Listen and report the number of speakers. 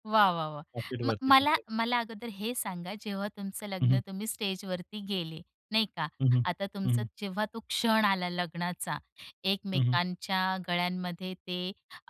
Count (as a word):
two